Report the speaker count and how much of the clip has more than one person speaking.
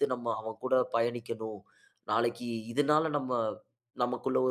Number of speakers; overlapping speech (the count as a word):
one, no overlap